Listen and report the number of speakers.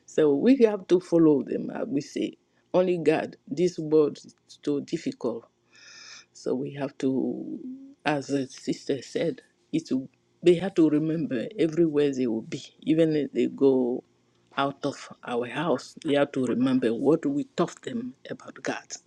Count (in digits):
1